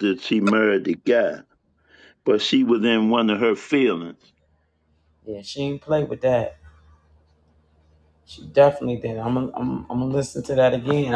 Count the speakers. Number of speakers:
2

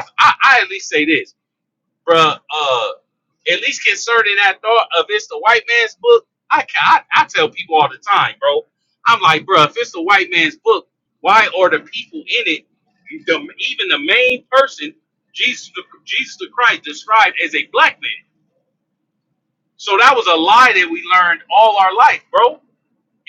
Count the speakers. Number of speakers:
1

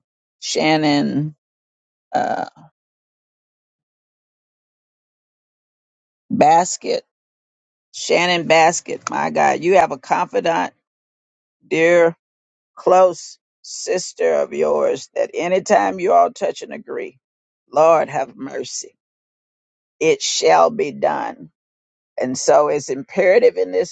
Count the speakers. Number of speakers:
1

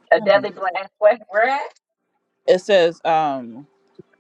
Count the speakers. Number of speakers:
2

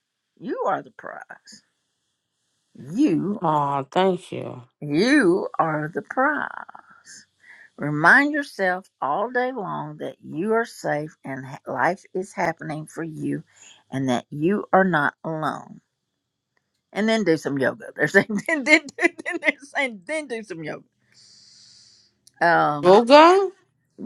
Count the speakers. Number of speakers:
2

